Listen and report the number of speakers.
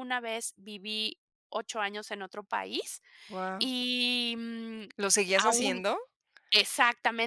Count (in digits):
2